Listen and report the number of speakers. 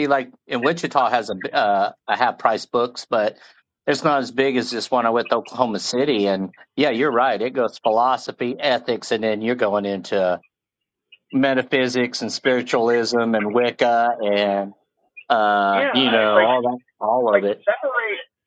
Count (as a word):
two